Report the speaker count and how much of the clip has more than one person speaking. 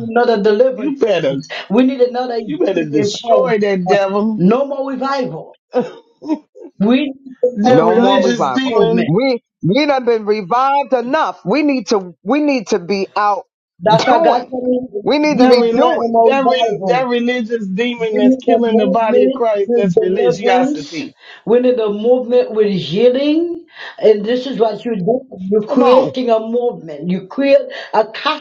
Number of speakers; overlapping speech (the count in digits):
3, about 31%